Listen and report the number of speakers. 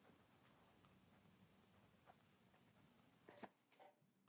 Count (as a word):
zero